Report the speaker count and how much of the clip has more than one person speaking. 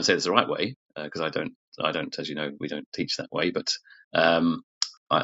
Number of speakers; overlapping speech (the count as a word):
one, no overlap